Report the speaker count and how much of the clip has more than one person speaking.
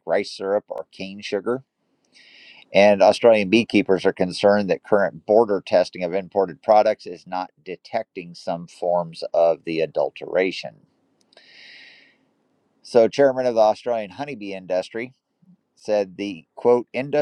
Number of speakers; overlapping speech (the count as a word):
one, no overlap